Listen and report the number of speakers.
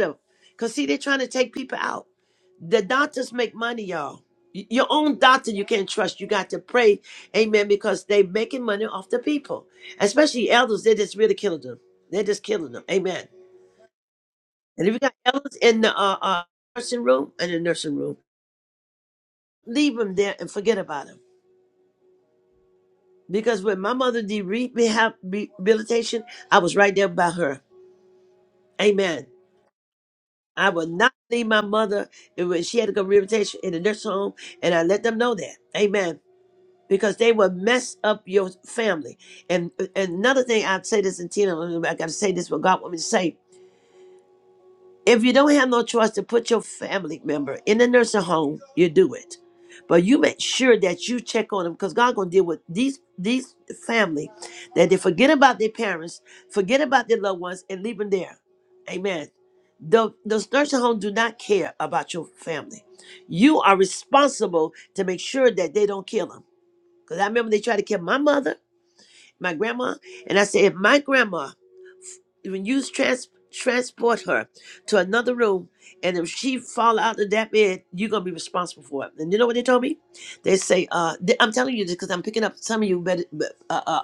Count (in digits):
1